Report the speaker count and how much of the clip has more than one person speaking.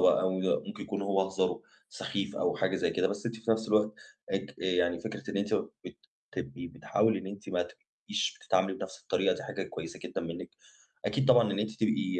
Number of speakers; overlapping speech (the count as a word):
one, no overlap